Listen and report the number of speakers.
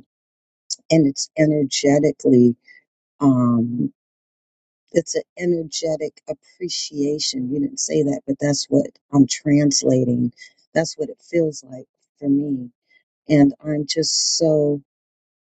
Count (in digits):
1